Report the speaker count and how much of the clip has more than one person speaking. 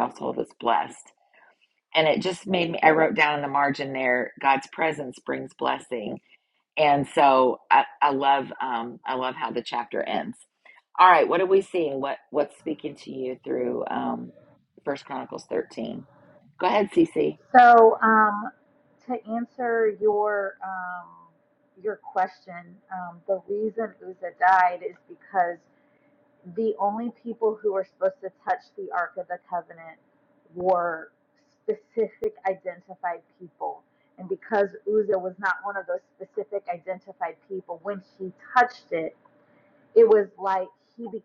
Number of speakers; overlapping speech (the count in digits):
2, no overlap